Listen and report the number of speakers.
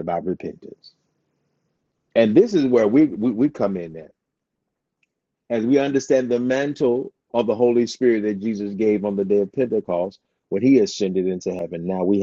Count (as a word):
one